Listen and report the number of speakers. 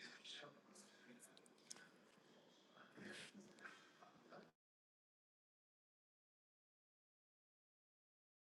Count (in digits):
0